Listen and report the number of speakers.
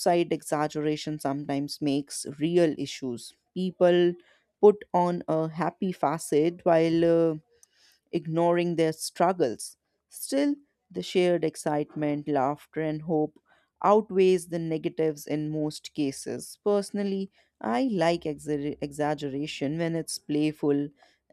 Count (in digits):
1